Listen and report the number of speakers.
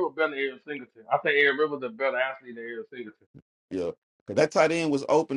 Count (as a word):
two